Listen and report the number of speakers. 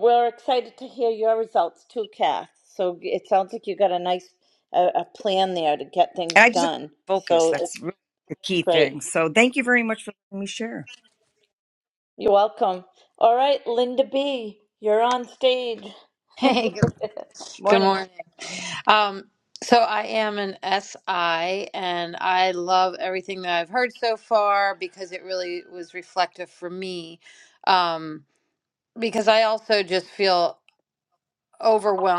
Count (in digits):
3